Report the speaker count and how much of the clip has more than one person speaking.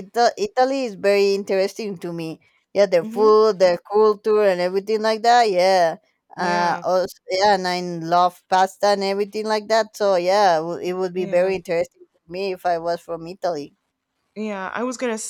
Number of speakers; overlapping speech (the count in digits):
2, about 8%